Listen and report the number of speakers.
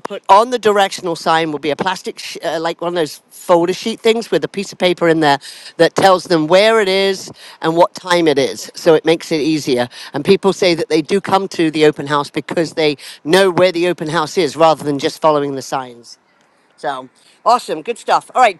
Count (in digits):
1